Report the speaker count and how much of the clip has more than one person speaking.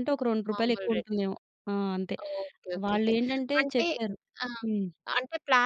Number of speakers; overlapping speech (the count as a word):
two, about 22%